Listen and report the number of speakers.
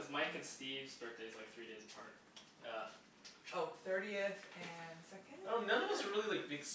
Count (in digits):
3